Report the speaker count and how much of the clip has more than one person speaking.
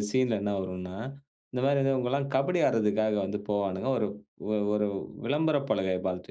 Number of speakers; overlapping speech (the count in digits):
1, no overlap